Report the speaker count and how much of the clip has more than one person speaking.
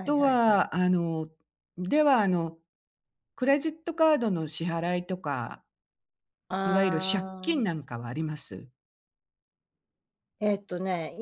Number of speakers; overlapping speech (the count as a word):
two, about 13%